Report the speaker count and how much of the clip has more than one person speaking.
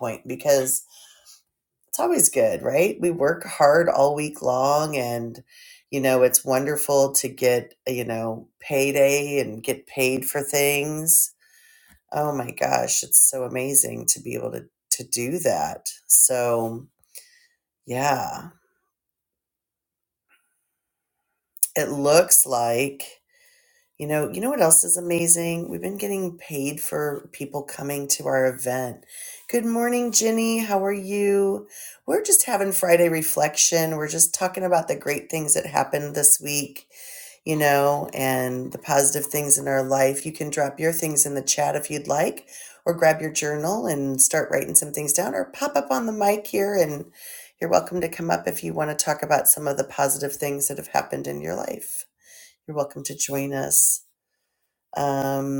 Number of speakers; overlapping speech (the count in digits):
1, no overlap